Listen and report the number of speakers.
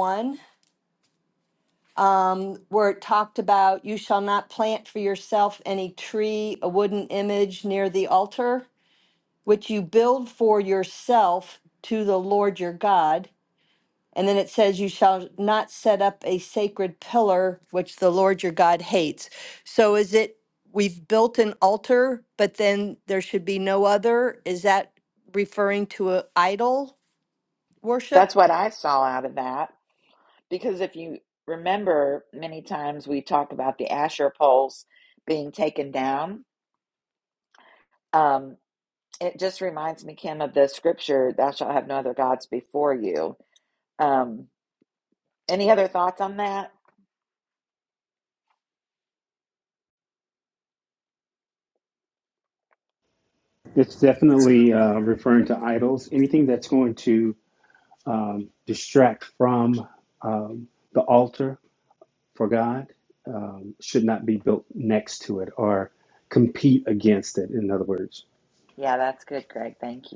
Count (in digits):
3